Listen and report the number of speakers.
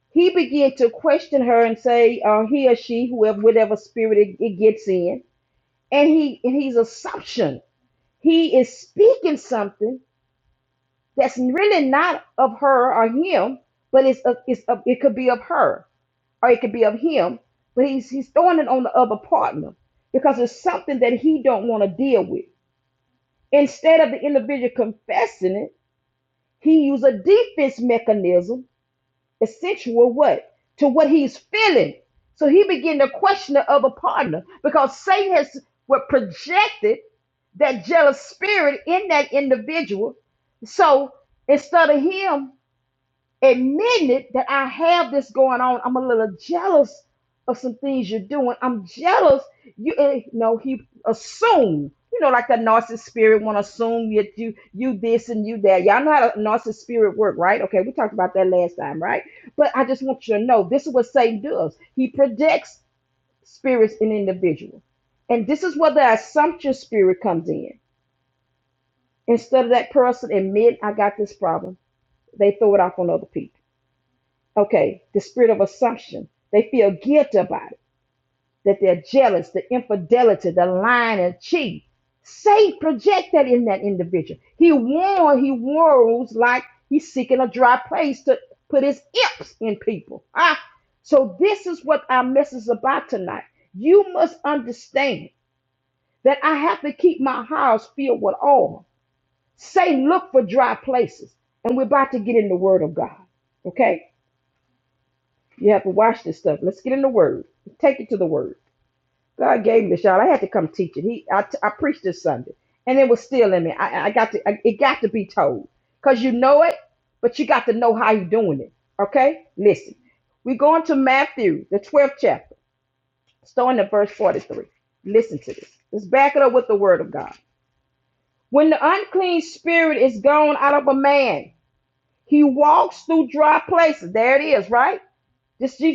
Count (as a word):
one